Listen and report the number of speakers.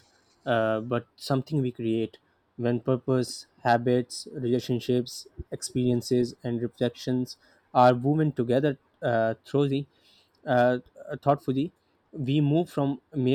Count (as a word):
one